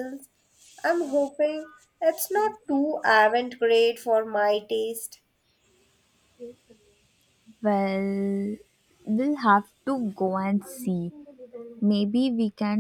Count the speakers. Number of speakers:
2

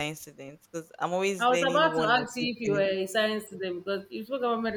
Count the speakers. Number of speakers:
2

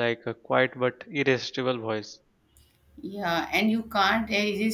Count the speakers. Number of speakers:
2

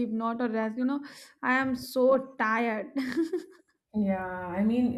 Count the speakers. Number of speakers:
2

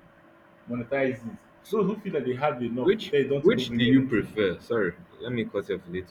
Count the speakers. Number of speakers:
2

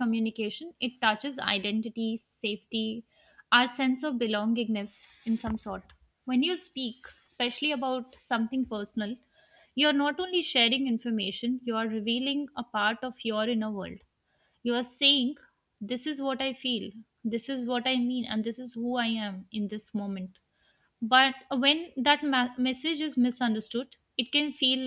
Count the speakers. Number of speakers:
1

